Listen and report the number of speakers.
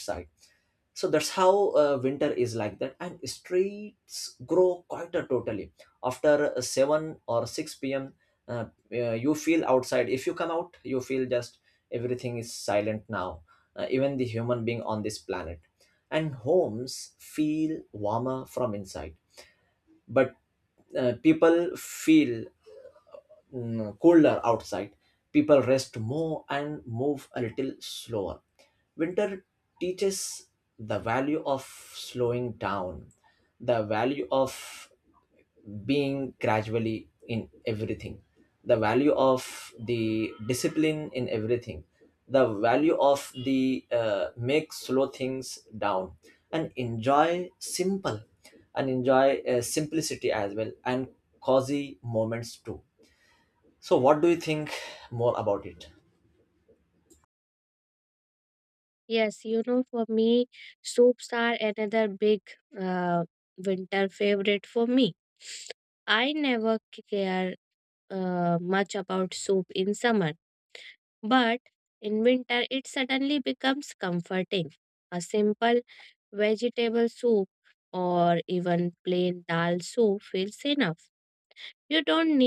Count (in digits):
2